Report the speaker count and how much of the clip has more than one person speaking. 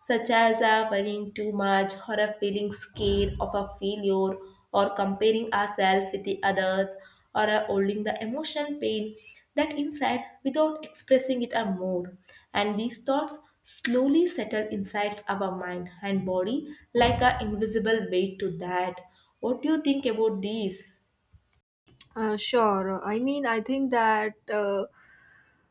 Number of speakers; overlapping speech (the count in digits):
2, no overlap